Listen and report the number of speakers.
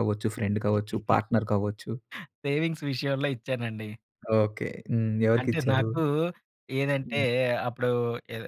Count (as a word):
two